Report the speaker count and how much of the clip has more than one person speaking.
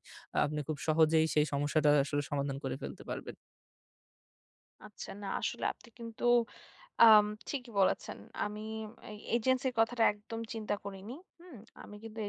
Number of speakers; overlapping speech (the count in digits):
2, no overlap